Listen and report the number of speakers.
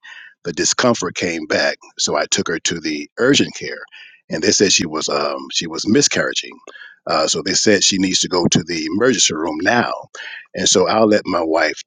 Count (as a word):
one